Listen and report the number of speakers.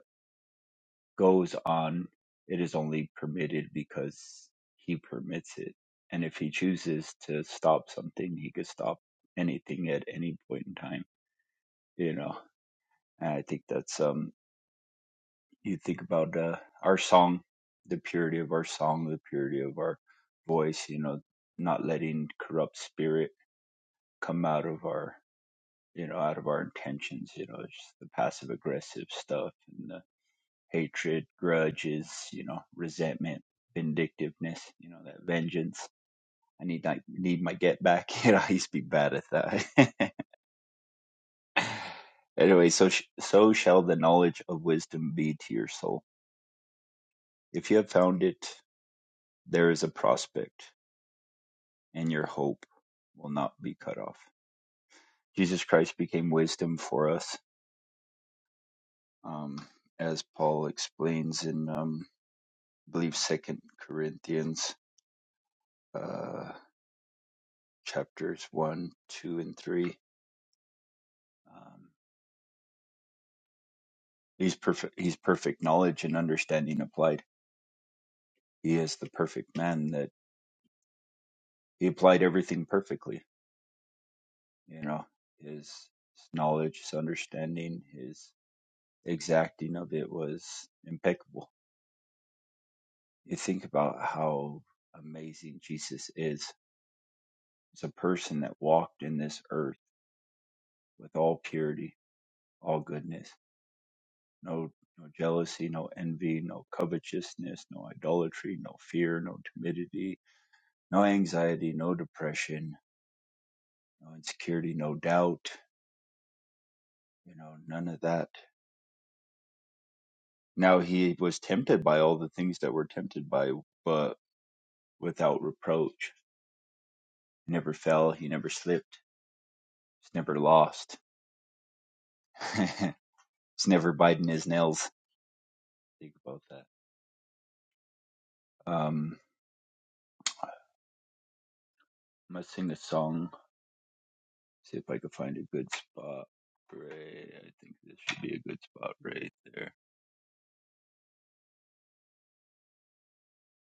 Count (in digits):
1